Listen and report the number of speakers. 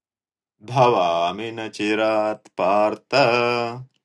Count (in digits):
1